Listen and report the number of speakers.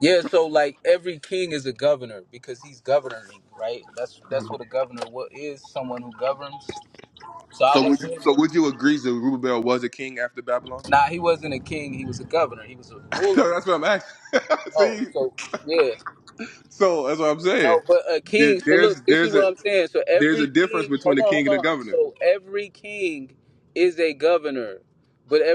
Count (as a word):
two